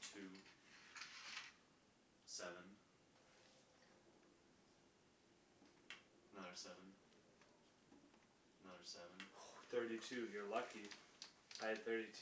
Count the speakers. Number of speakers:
two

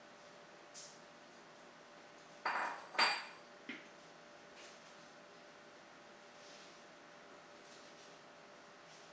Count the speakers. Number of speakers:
zero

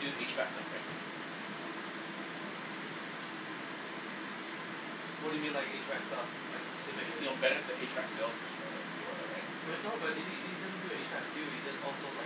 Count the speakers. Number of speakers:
two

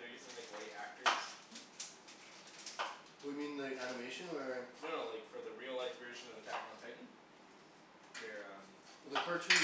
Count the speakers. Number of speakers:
two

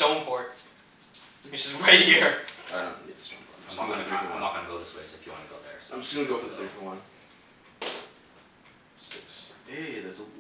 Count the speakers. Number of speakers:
three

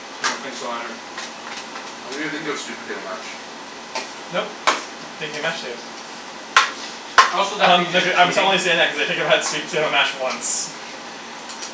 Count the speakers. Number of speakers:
three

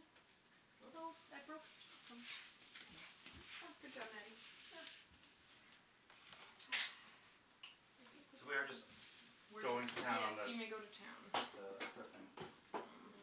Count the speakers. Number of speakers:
three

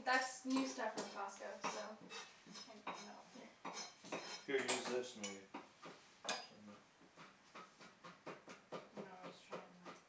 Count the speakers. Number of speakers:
three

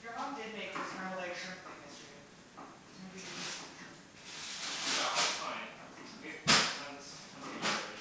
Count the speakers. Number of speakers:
two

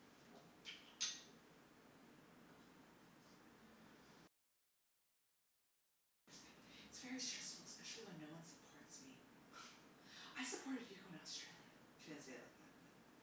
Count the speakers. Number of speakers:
one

